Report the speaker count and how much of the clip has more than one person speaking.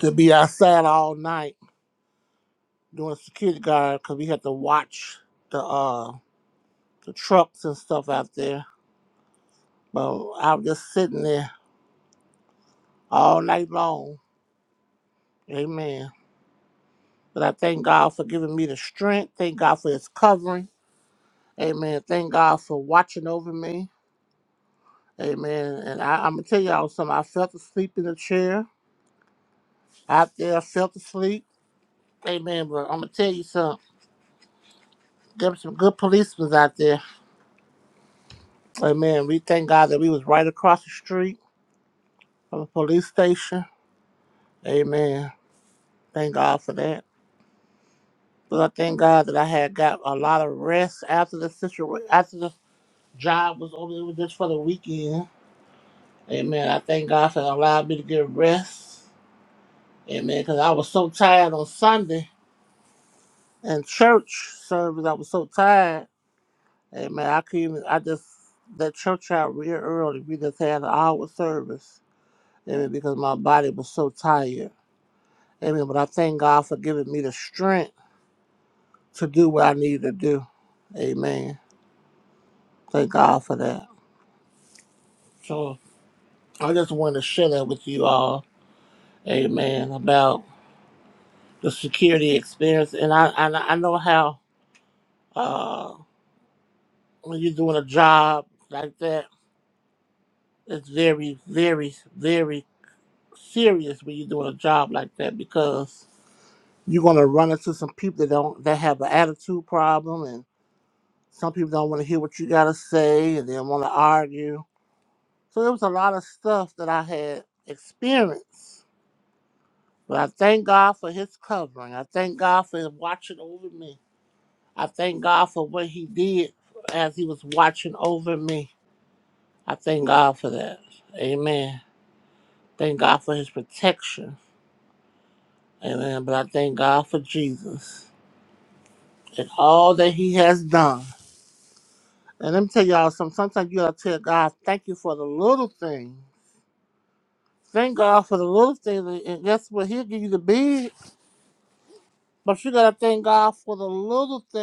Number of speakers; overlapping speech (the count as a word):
one, no overlap